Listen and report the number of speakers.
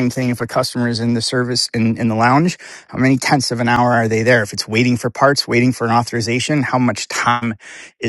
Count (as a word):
one